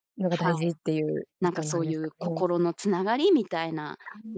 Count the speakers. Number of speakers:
2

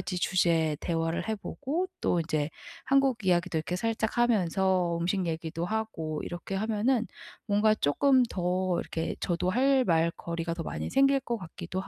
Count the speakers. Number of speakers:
1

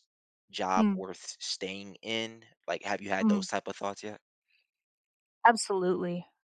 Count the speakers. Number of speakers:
2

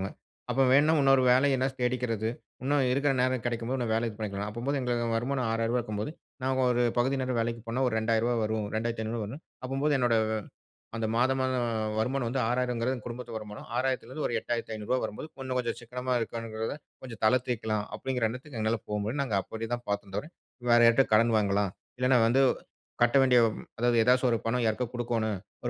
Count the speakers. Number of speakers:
1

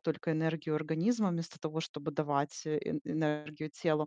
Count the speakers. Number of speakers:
1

